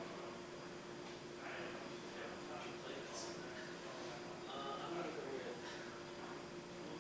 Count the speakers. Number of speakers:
one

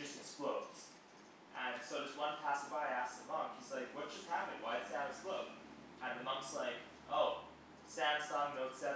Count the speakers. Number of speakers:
one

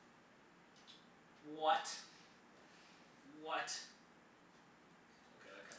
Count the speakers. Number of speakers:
one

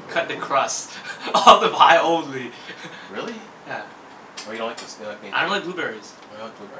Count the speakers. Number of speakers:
two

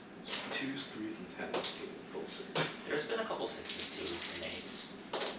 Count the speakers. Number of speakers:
two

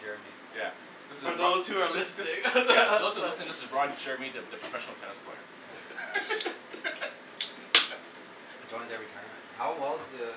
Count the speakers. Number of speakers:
three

